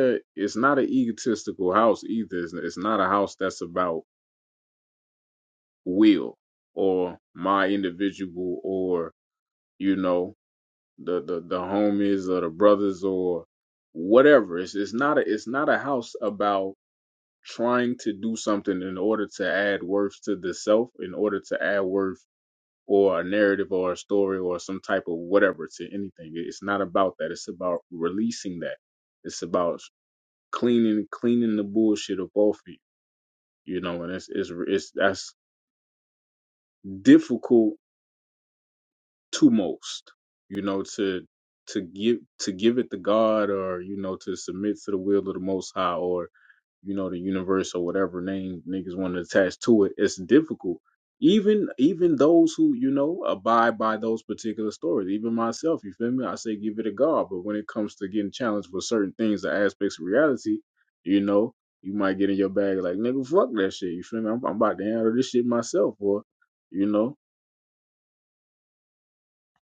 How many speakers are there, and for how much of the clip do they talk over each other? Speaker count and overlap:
1, no overlap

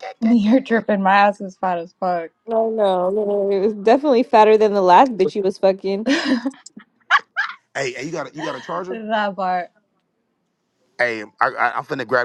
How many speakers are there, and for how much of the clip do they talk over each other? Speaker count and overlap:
3, about 2%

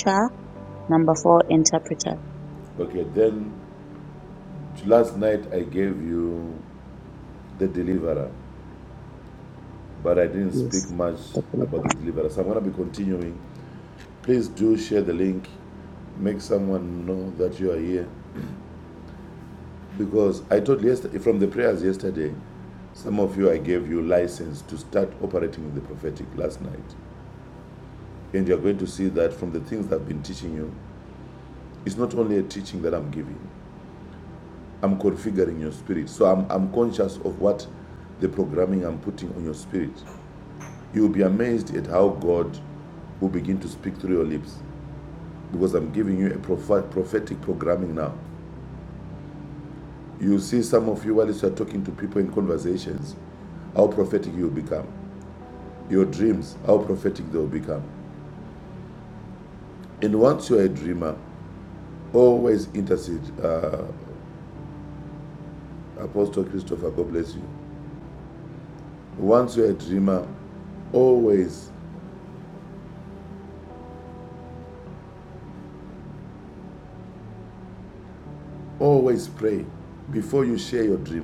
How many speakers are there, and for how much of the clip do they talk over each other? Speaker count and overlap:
2, under 1%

